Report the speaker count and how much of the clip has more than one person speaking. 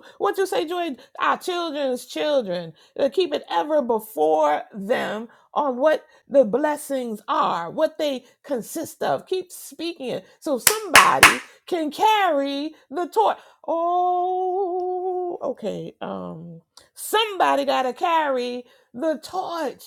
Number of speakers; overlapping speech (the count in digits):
1, no overlap